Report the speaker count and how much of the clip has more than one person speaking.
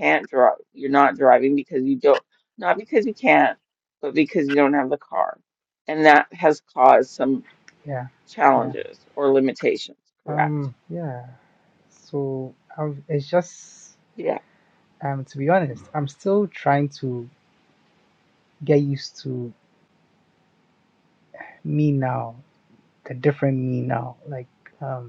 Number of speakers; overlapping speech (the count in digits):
2, about 2%